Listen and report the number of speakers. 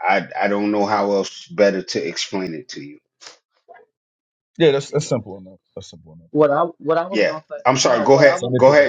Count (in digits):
3